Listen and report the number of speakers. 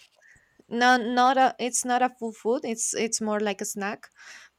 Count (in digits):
1